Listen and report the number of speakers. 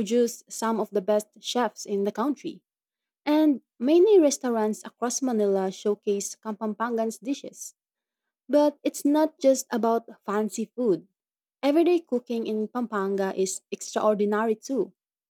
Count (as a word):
one